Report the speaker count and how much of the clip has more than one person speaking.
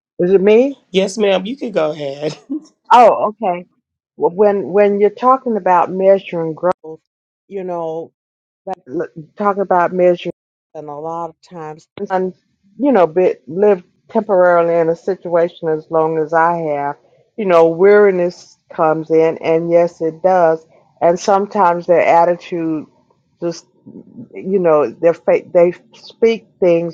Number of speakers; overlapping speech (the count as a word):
two, no overlap